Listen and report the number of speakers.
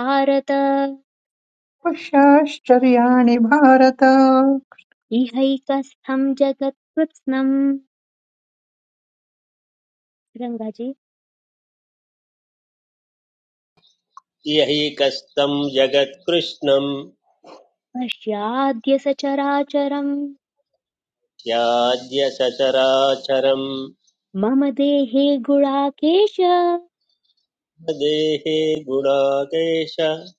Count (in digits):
3